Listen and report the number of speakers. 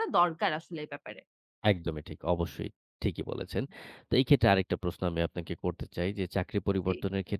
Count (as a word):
two